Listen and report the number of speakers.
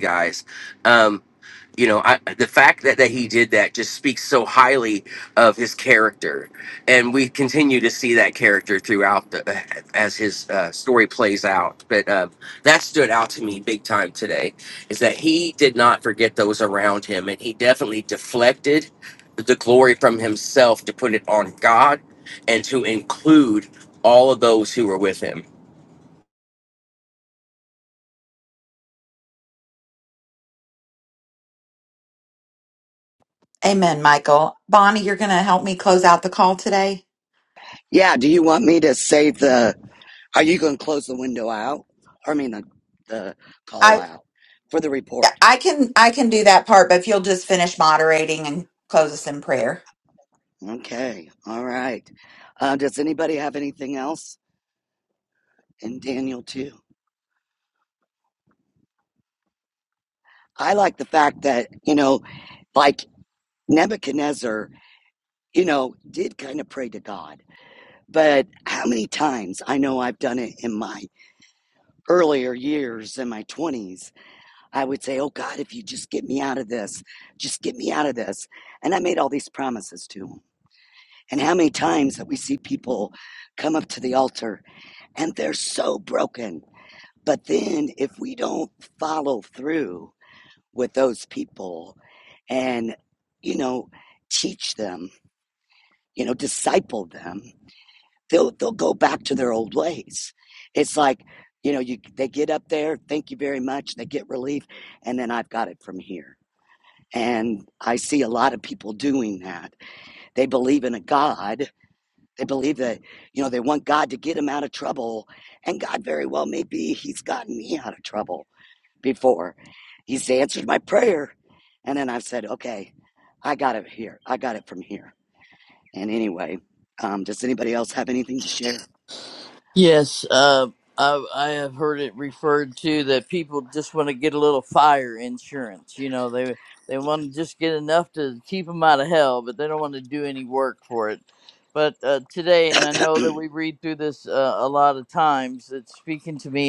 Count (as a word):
four